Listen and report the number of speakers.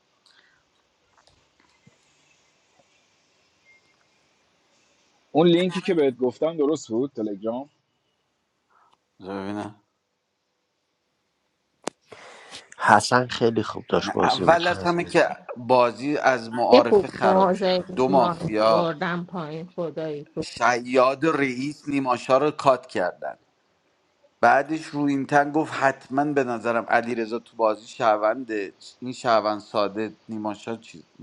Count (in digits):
4